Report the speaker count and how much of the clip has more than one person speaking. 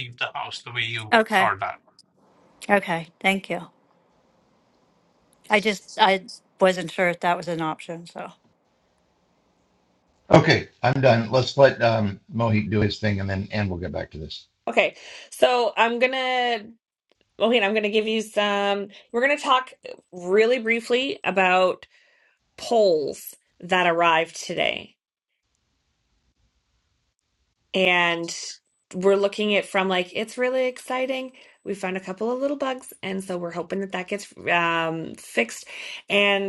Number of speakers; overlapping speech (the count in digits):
4, about 1%